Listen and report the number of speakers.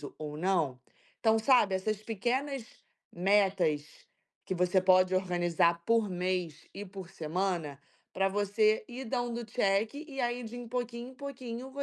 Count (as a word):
one